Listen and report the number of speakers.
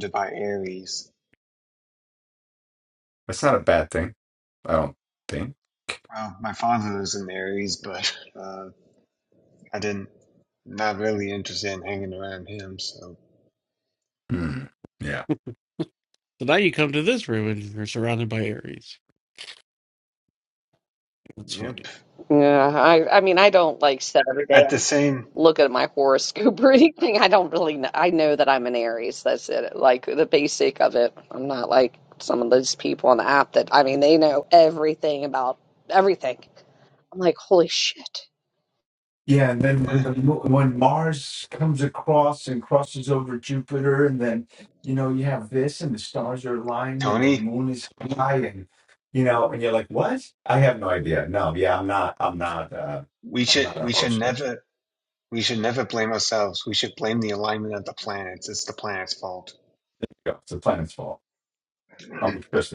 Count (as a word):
four